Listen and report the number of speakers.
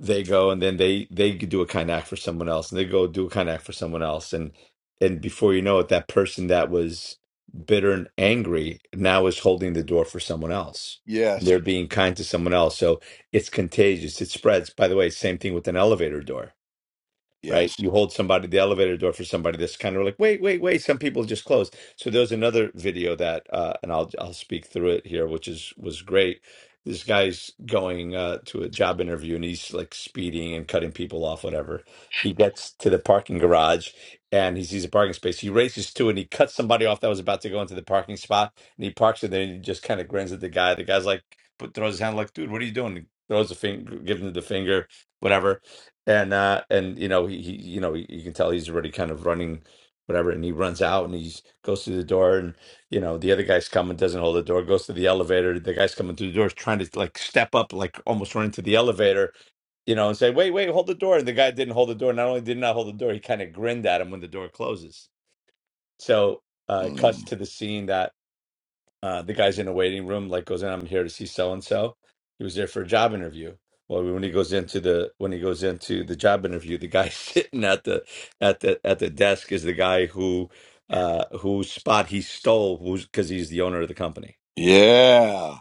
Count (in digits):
2